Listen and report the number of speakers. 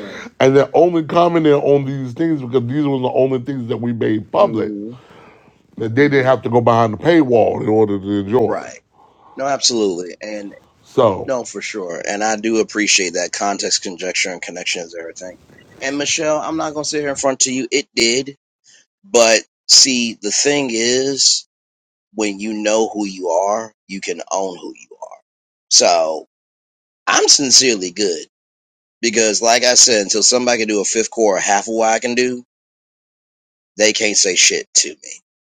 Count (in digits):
2